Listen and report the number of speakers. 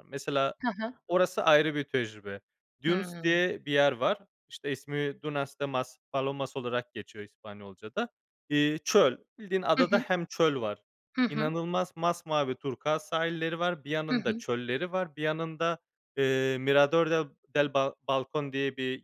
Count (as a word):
two